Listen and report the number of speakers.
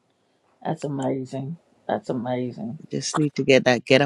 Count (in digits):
2